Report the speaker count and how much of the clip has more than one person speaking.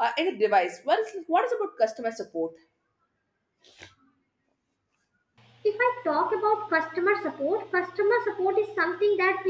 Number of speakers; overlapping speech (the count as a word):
two, no overlap